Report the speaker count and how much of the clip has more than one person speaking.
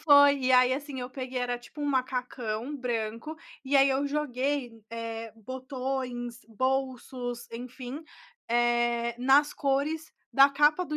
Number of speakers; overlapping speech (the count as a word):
one, no overlap